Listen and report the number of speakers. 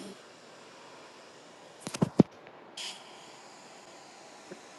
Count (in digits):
0